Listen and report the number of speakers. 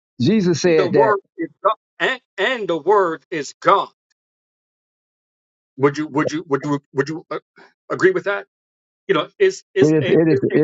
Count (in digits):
2